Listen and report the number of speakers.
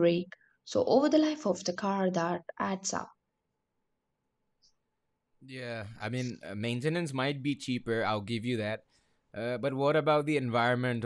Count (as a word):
two